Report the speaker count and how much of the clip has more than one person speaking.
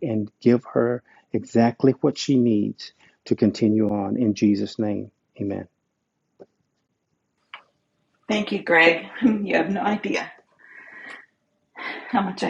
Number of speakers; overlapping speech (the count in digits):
2, no overlap